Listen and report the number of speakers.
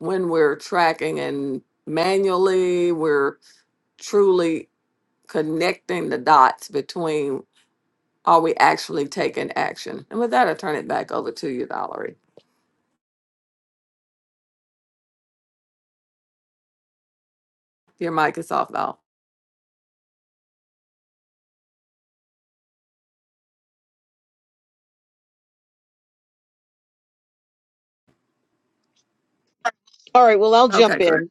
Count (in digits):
2